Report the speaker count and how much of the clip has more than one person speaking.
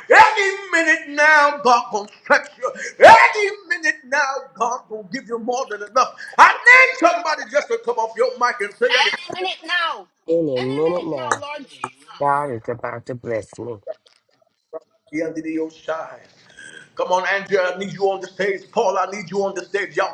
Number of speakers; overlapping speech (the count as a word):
three, about 5%